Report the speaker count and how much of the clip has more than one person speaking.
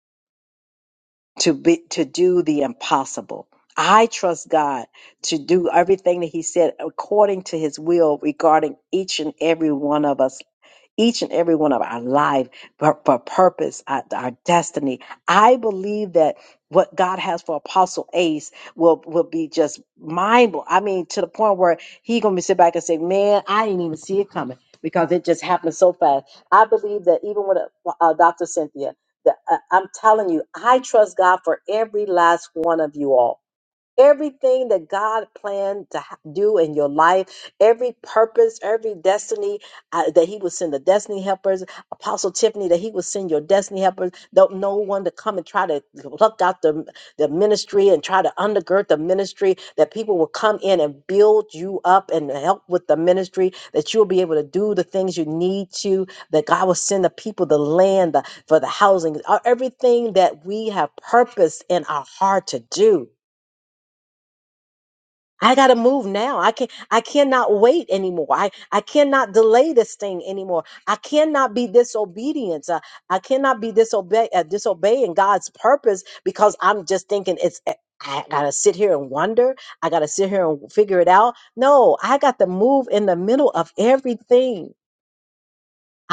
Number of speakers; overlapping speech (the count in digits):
1, no overlap